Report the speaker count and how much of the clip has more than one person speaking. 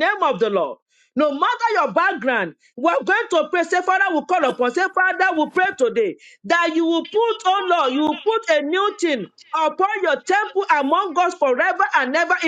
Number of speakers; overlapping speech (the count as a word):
one, no overlap